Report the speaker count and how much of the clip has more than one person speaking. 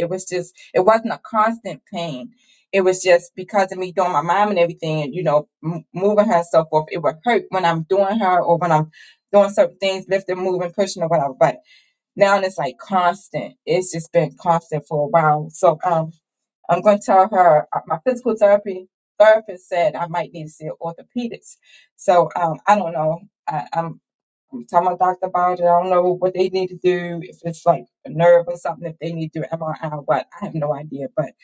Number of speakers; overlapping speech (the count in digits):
1, no overlap